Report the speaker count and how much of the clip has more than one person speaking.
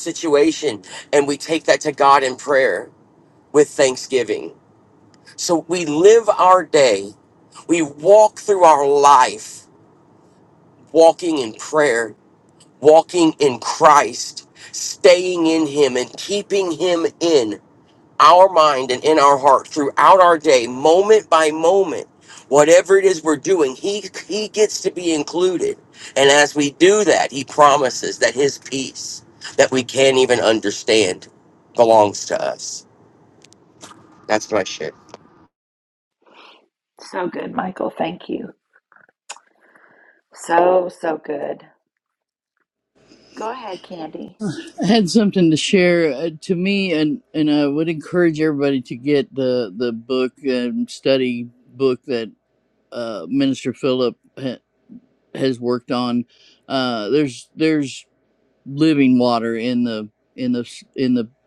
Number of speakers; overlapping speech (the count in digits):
3, no overlap